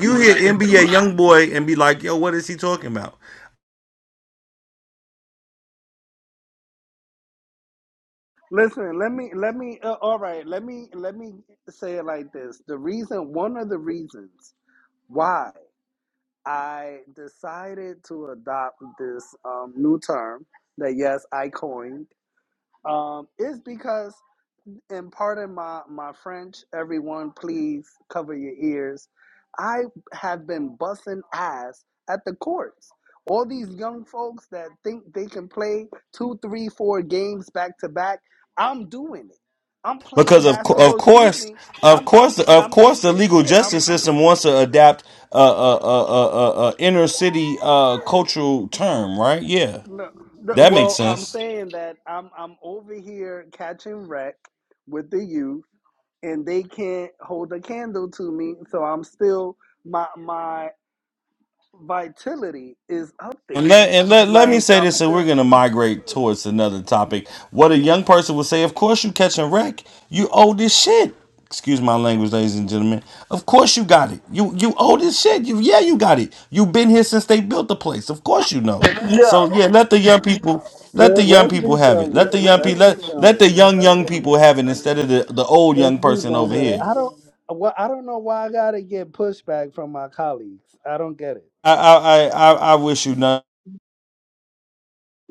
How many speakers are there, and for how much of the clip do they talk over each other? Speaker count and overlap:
two, about 10%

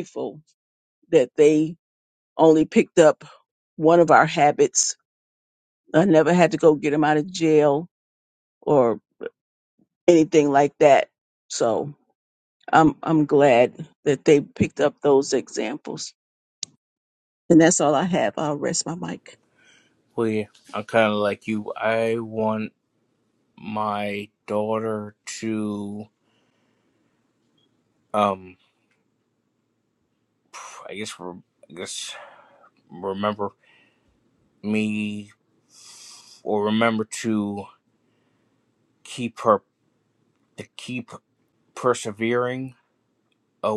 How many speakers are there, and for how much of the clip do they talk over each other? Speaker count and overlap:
two, no overlap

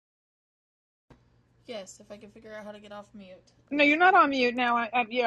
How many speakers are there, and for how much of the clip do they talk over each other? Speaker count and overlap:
two, about 11%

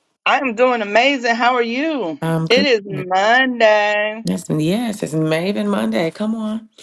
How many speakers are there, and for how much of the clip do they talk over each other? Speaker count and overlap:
two, about 8%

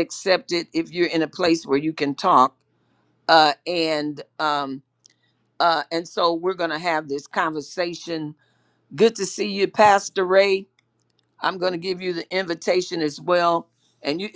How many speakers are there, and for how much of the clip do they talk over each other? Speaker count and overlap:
one, no overlap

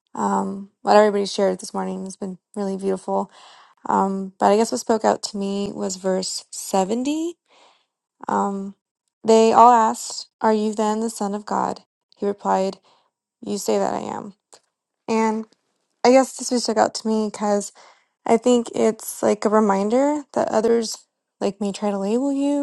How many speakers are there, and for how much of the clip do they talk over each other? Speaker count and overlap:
one, no overlap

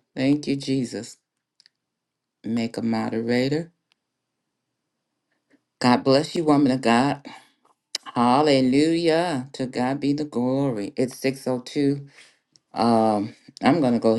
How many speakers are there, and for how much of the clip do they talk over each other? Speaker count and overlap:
one, no overlap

